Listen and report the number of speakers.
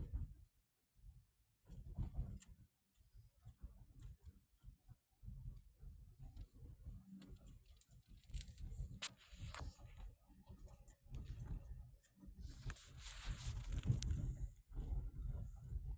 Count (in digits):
0